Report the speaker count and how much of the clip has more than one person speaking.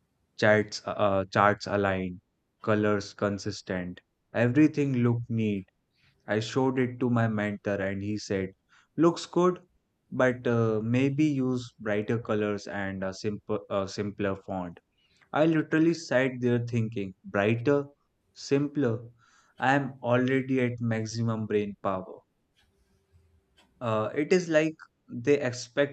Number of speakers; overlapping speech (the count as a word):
one, no overlap